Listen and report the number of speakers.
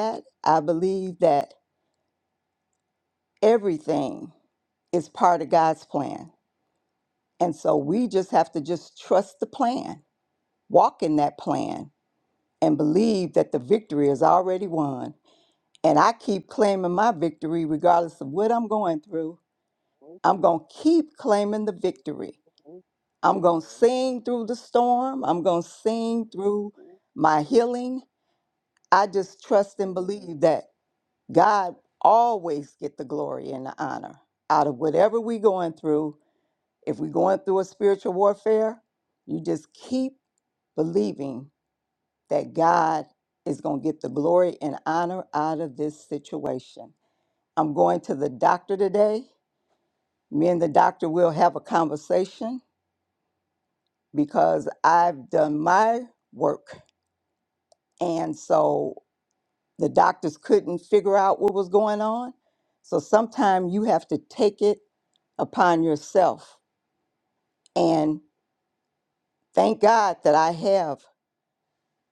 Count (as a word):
one